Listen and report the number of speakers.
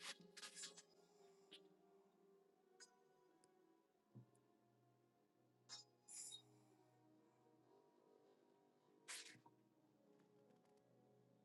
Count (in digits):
0